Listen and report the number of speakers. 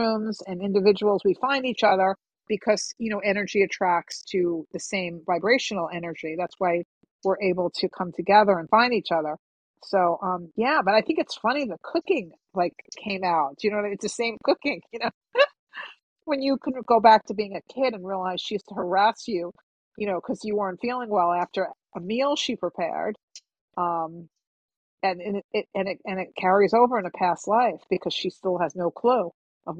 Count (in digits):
1